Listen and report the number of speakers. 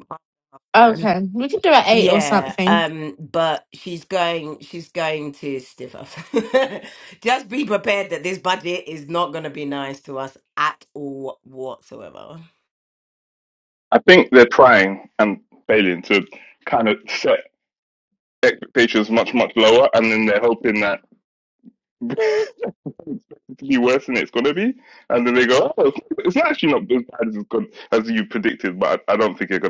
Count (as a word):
three